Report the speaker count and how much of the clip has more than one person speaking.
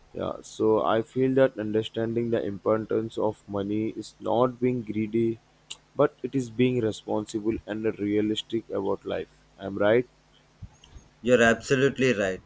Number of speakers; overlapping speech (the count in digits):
2, no overlap